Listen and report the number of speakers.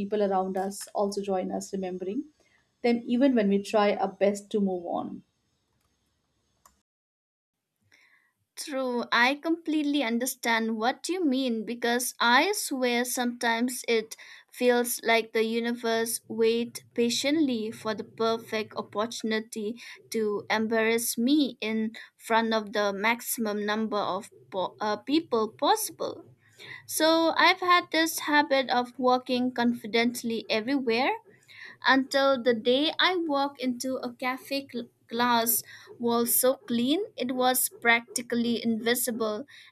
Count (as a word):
two